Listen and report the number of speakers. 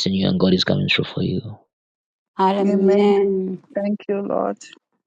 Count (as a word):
three